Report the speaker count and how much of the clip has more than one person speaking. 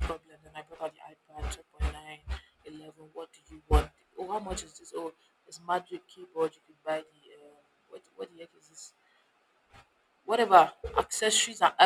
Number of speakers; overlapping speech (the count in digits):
1, no overlap